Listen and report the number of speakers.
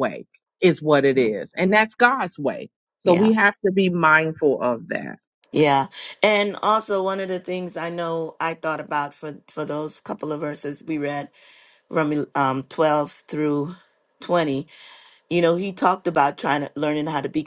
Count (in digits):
2